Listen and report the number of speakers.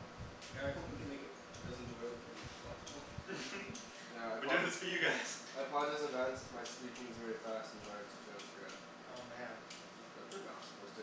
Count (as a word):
three